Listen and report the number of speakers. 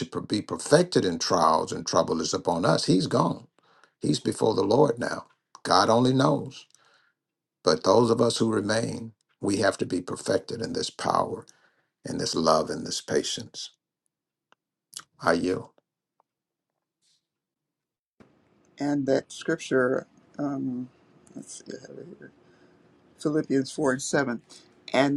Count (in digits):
2